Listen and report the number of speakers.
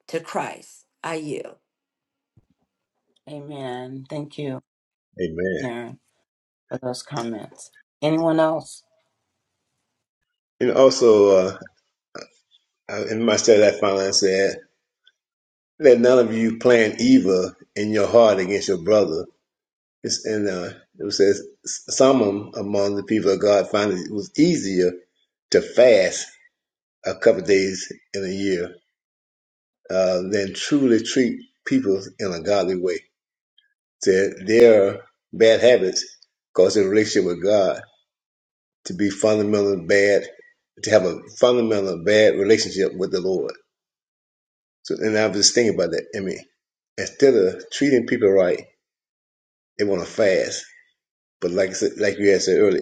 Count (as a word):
three